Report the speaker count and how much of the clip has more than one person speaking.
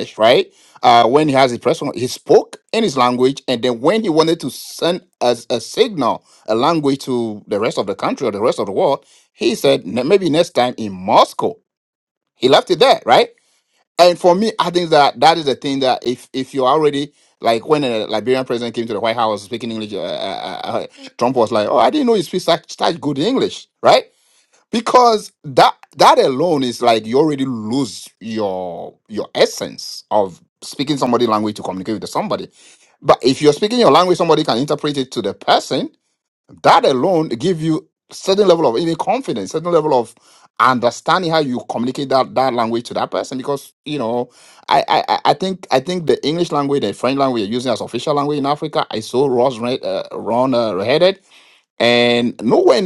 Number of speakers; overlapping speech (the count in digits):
1, no overlap